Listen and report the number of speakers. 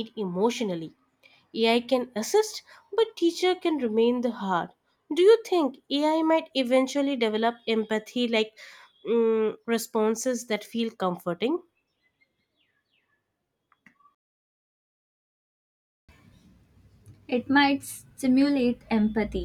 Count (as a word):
two